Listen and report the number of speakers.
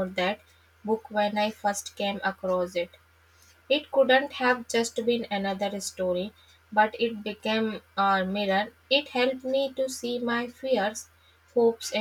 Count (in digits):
1